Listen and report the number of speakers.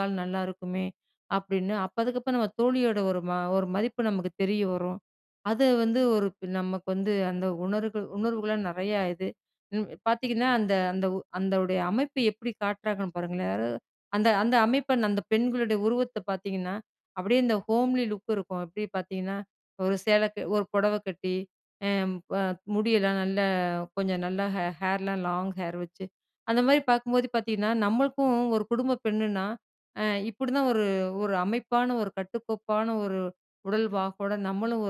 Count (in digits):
1